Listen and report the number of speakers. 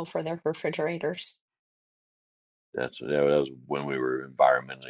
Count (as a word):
two